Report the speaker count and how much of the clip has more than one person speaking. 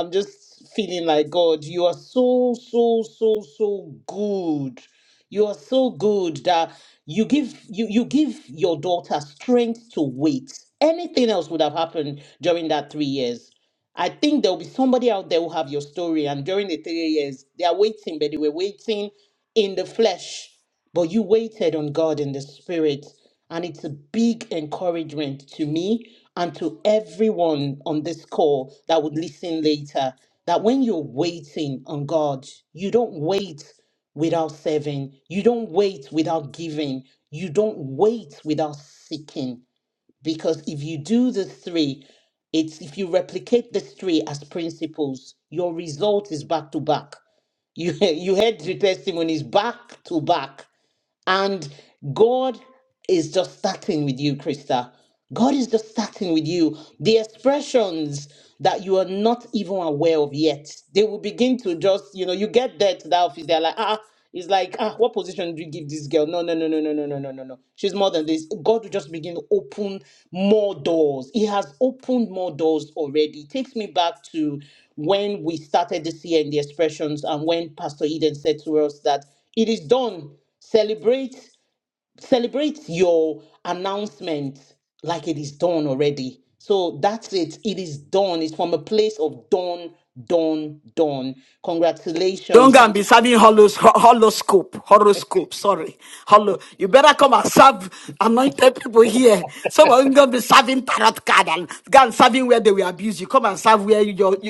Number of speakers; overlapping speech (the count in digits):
2, under 1%